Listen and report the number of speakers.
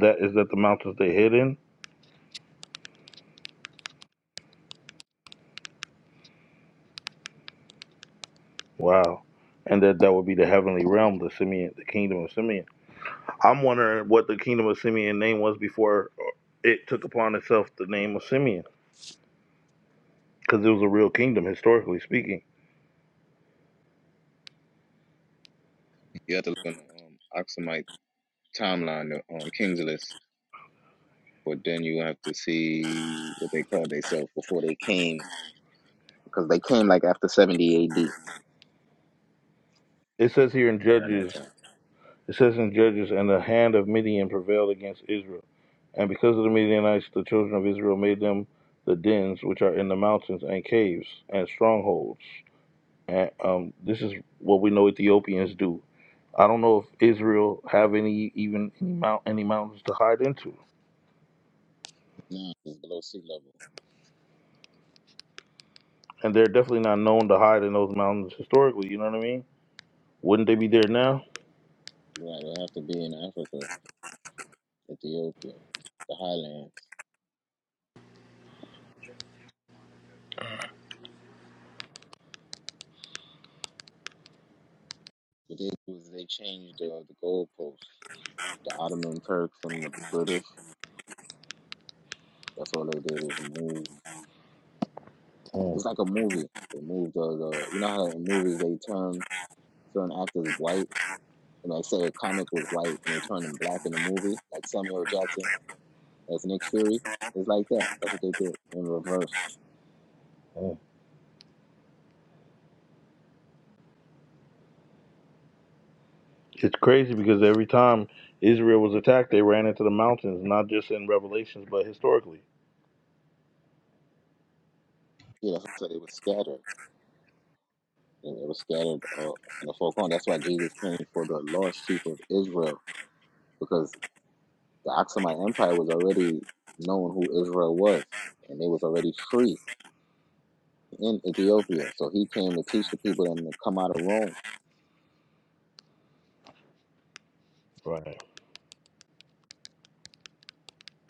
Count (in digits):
2